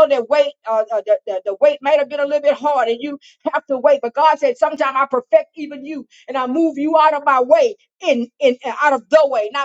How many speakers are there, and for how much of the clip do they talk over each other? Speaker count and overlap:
one, no overlap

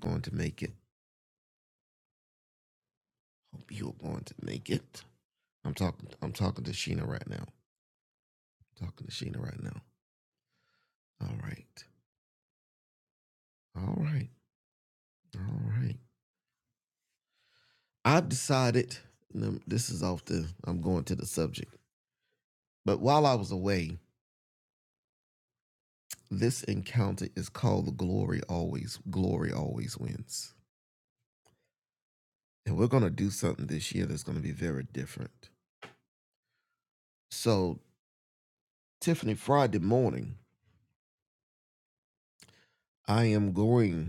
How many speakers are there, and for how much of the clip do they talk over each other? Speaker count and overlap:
one, no overlap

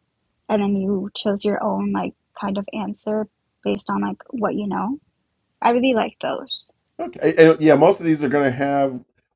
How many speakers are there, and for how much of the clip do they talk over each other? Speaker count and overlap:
two, no overlap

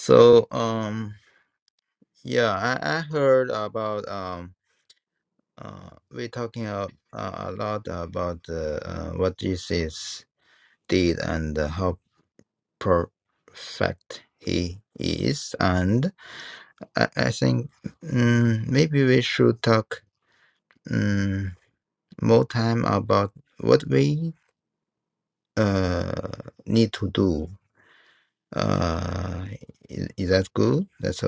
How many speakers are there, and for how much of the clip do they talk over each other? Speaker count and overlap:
one, no overlap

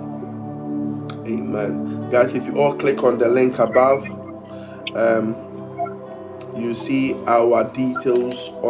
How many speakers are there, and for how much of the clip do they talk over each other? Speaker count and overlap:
one, no overlap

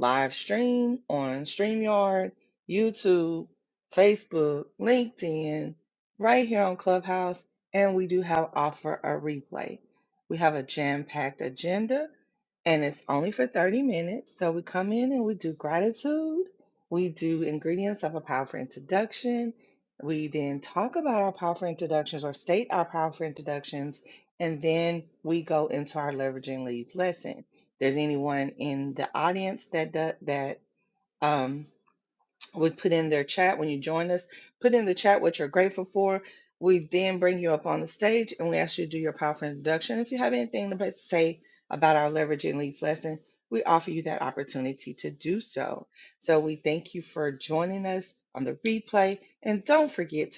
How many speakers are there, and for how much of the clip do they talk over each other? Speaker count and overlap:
one, no overlap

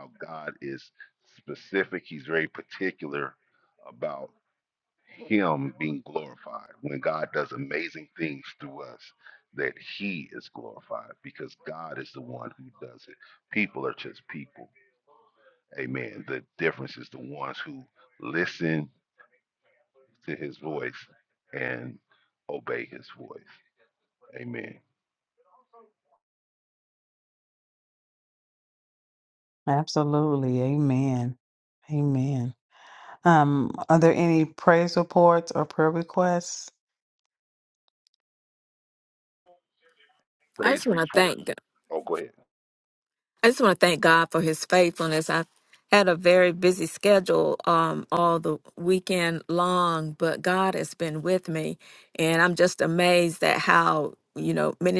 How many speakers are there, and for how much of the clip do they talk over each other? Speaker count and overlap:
three, about 1%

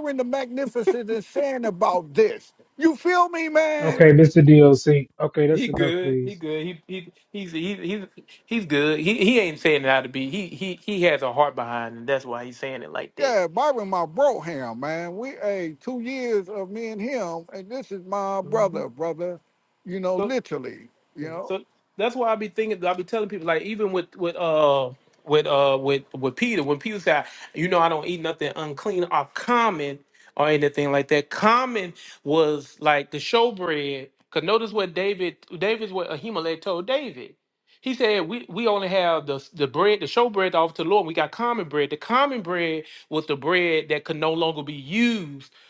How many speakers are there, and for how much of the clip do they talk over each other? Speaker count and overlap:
three, about 4%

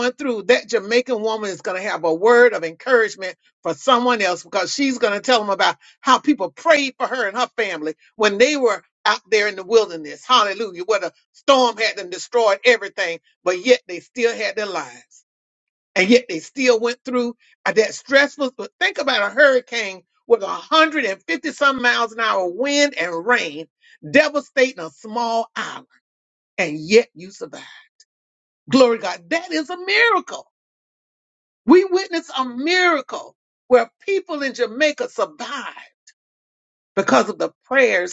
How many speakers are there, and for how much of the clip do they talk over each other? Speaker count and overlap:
one, no overlap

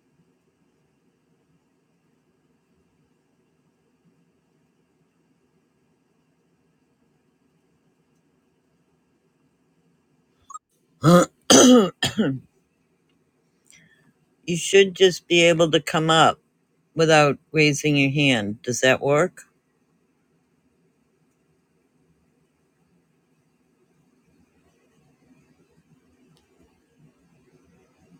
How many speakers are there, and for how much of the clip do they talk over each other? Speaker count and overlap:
one, no overlap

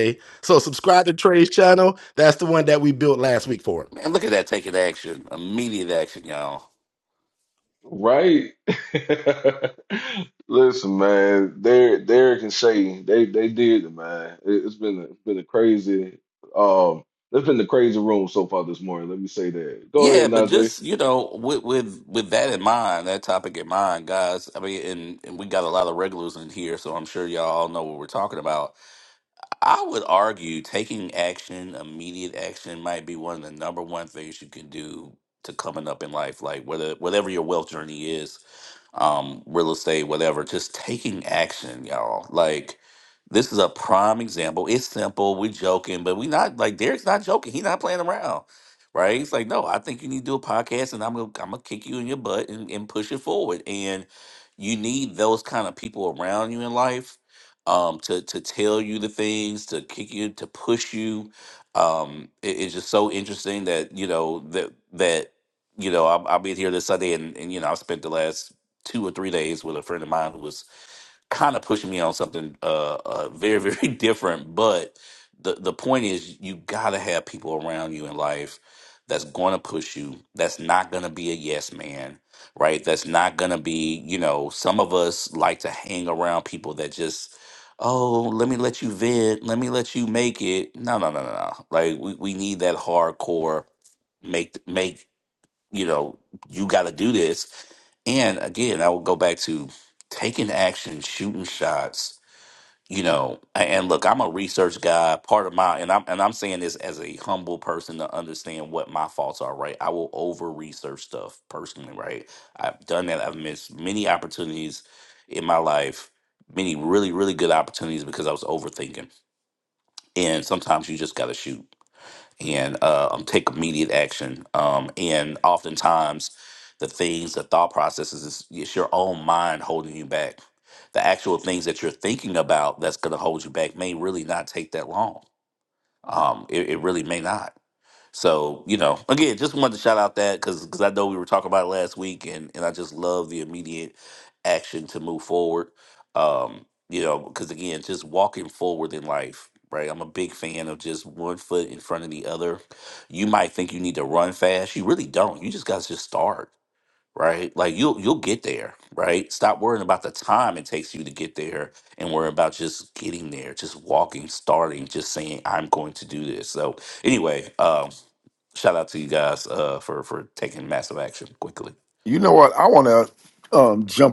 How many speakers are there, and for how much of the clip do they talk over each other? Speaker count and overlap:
four, under 1%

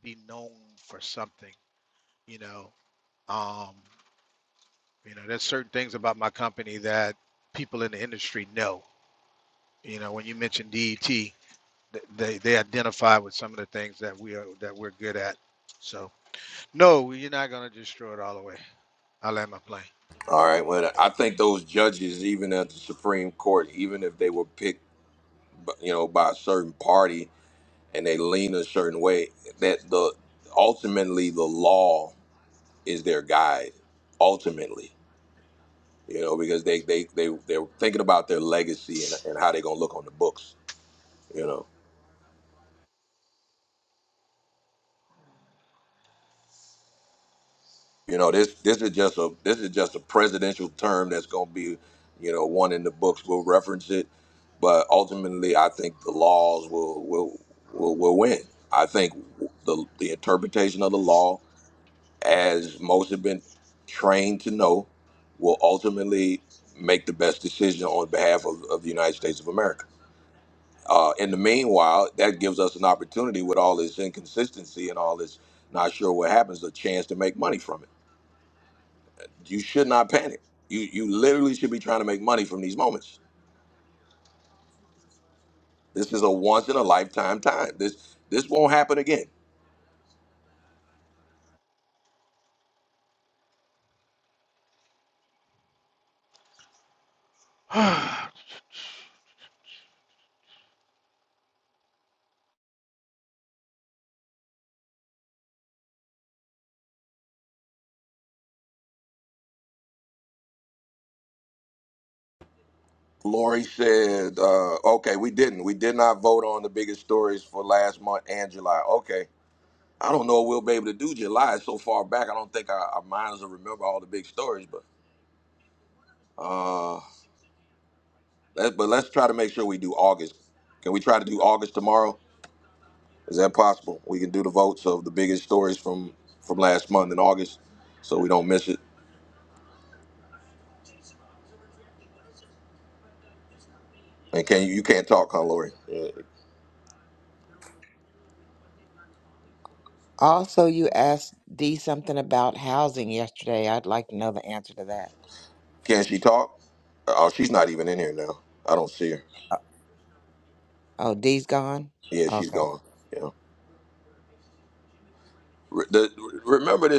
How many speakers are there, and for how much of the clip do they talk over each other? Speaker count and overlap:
three, under 1%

